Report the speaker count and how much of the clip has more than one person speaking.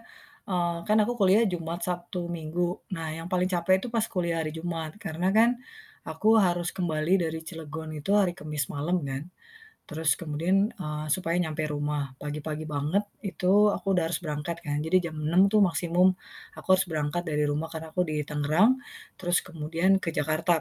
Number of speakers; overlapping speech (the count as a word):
one, no overlap